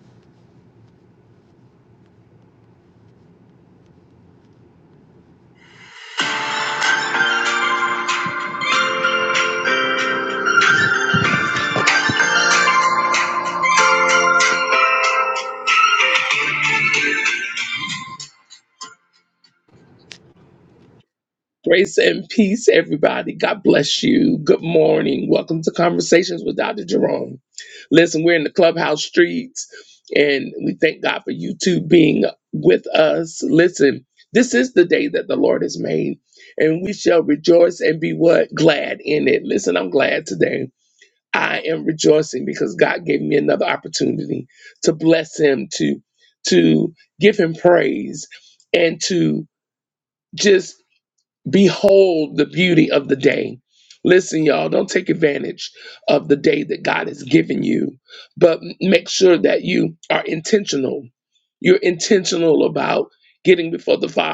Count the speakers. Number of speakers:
one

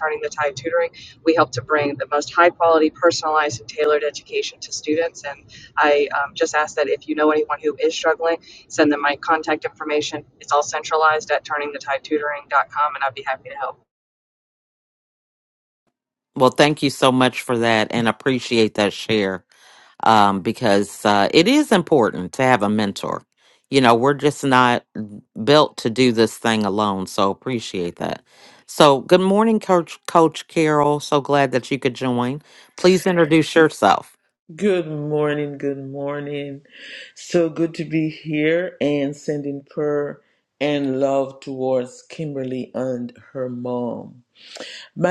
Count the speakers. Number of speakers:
three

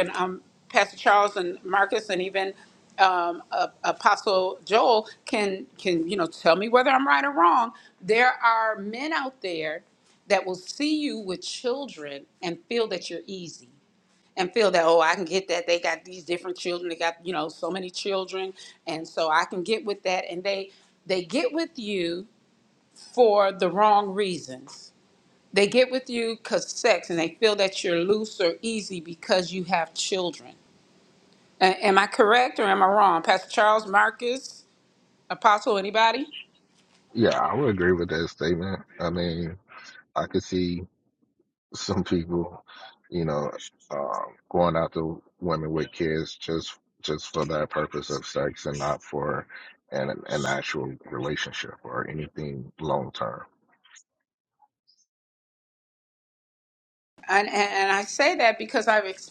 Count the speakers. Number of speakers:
two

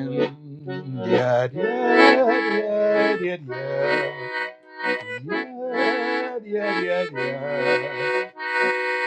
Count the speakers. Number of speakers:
one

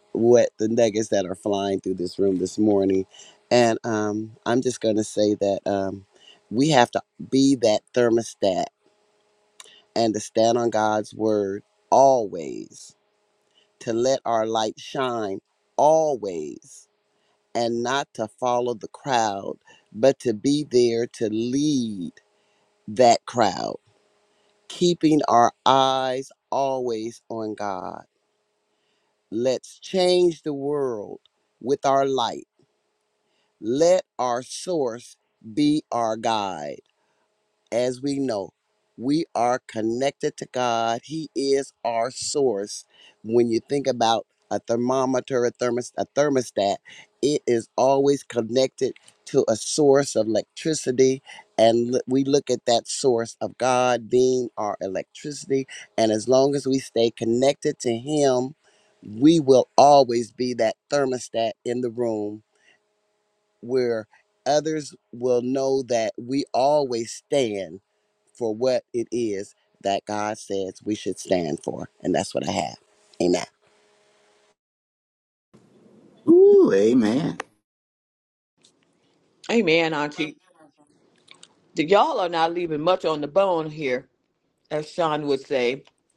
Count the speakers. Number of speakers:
three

